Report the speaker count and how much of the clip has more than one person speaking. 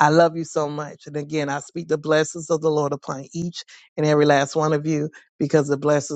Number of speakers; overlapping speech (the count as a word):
one, no overlap